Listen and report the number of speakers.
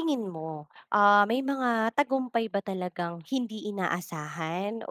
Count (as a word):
one